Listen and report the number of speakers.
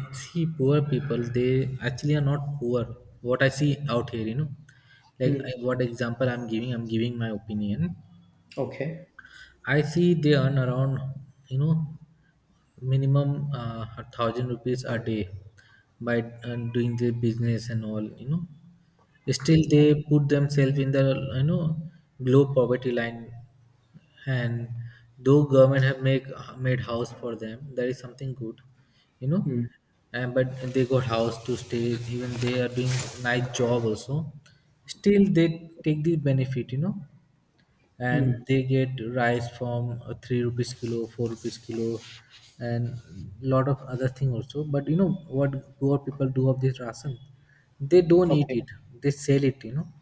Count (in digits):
2